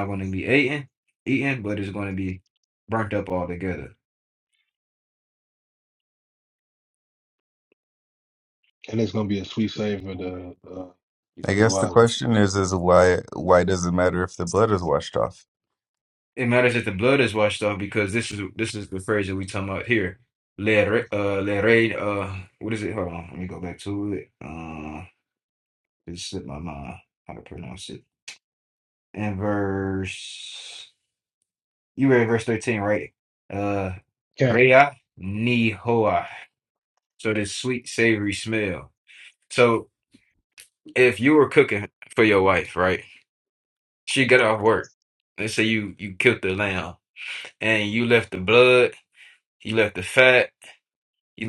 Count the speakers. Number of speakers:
3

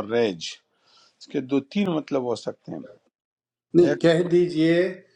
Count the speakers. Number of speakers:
2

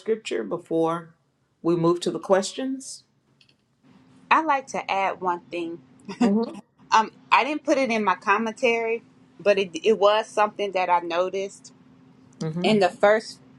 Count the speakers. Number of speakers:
2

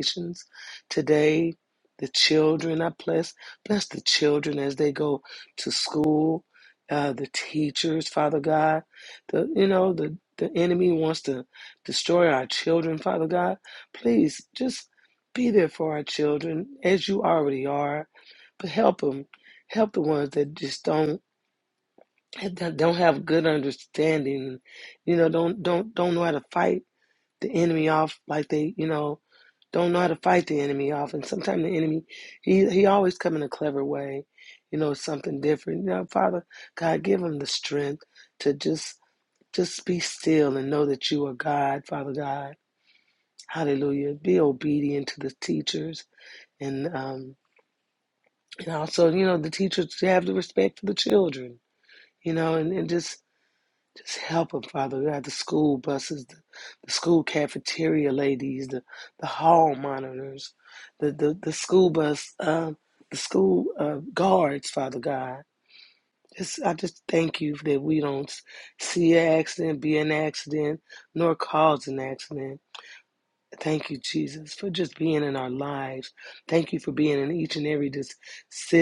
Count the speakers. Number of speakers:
1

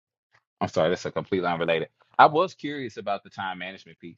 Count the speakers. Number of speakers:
1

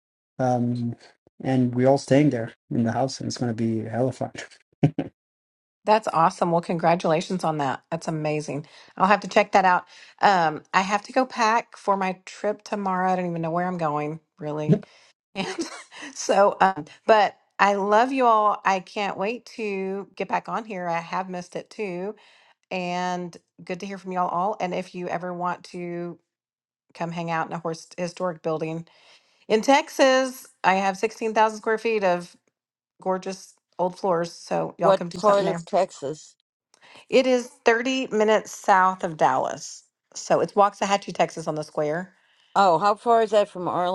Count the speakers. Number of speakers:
3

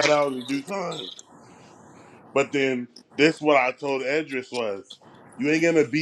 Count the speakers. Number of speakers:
1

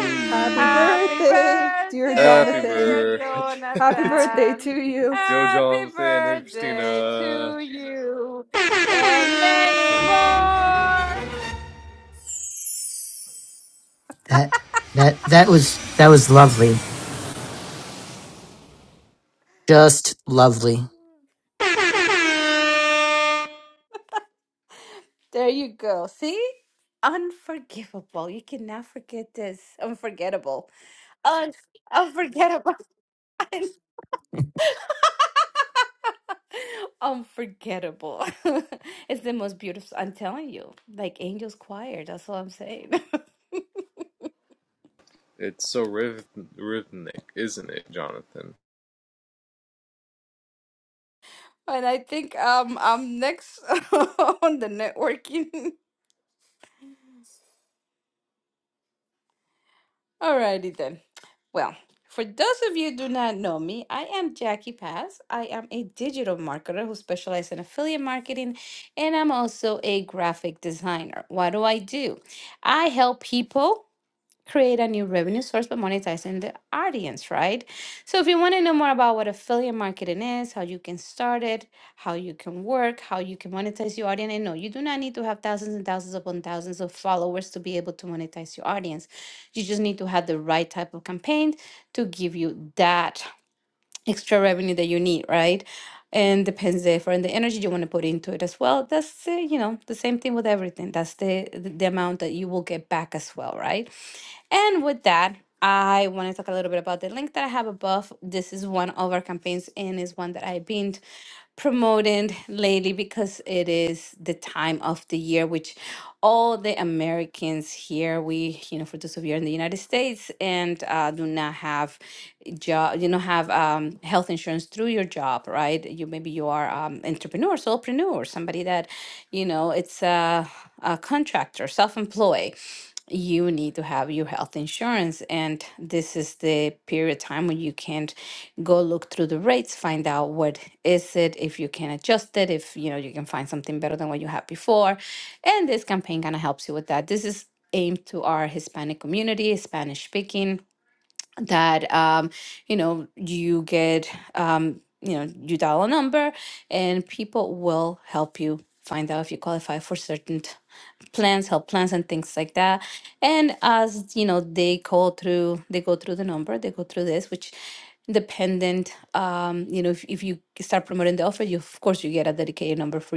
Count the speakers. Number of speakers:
4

